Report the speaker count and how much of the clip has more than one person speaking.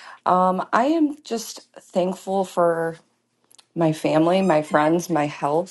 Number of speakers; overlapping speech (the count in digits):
1, no overlap